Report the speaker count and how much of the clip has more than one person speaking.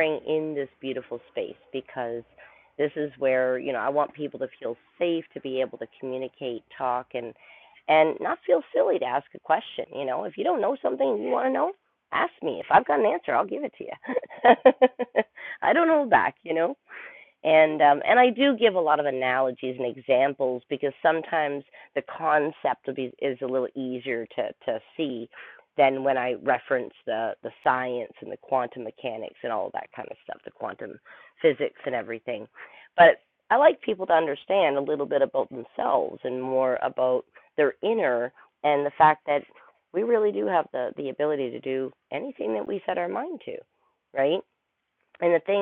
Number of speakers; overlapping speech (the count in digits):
1, no overlap